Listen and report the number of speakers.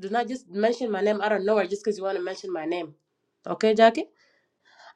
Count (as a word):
one